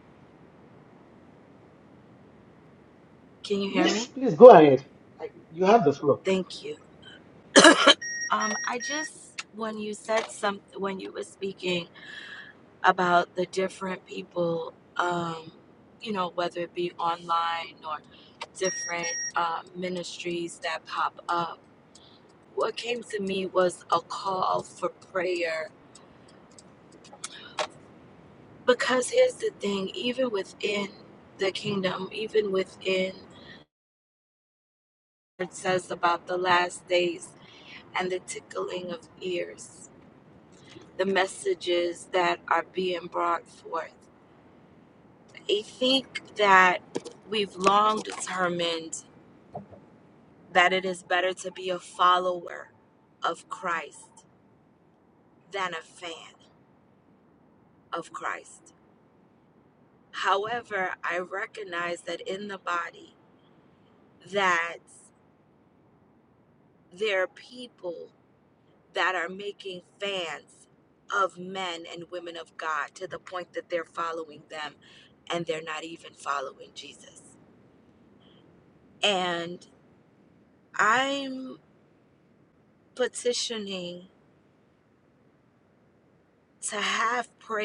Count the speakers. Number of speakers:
2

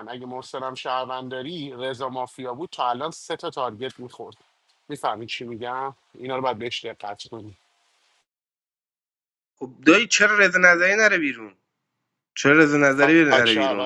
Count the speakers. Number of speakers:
2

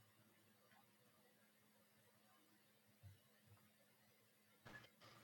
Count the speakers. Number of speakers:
0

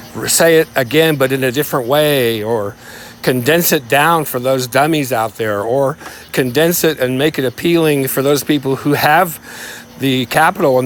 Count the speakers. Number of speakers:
1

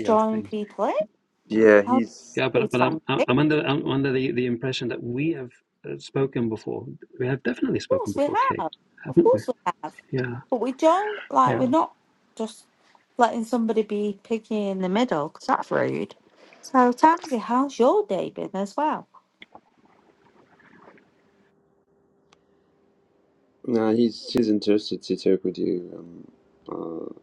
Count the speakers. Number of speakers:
3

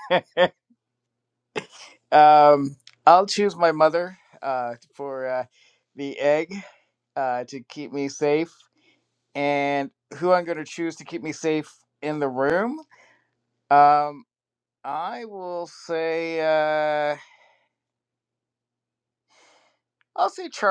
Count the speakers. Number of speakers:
1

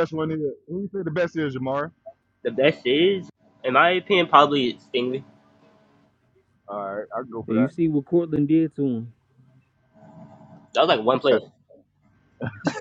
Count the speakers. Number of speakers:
3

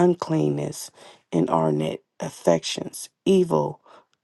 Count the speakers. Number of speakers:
1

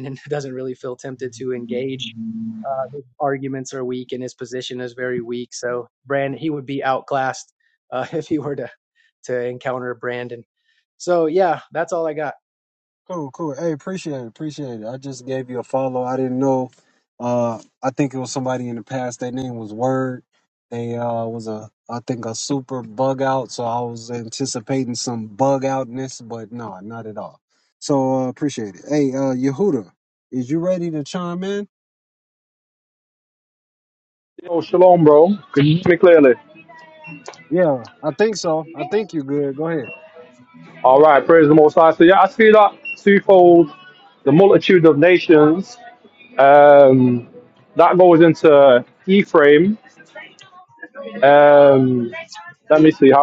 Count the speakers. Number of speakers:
3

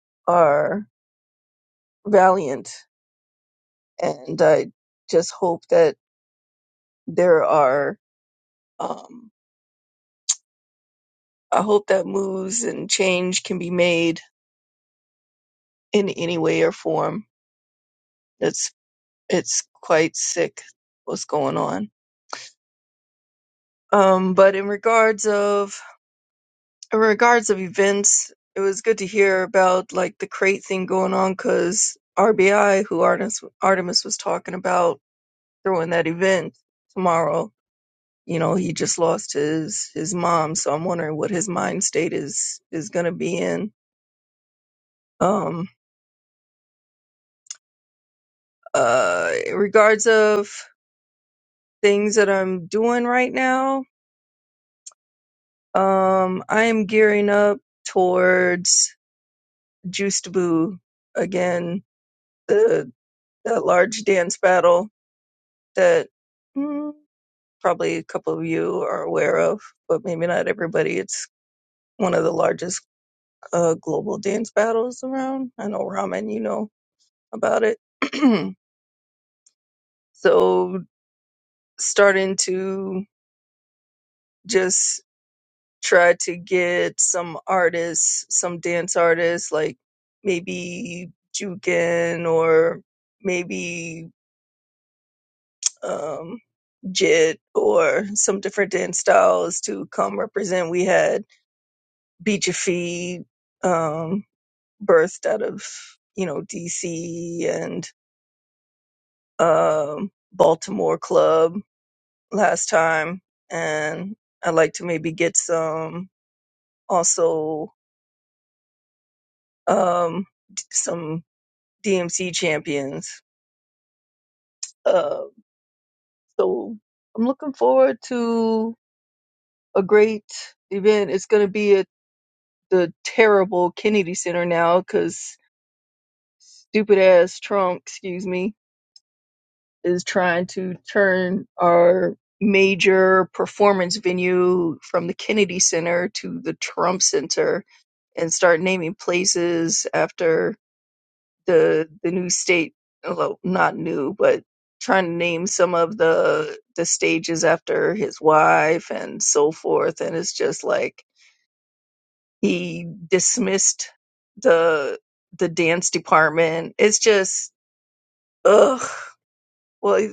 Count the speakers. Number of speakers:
1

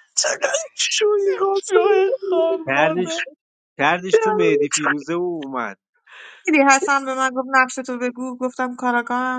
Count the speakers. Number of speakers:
4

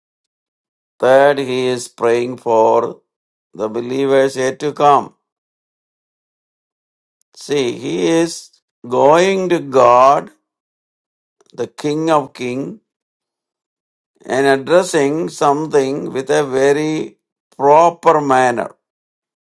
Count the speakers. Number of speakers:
1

